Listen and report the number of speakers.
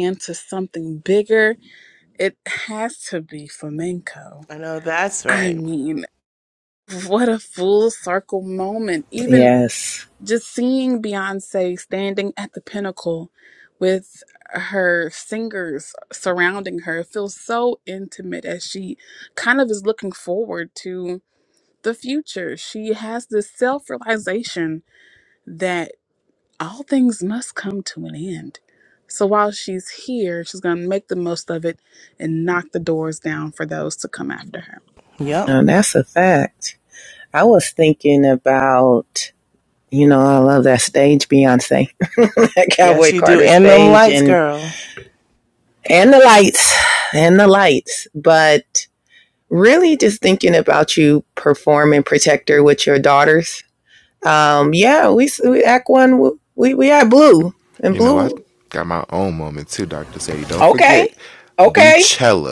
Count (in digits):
4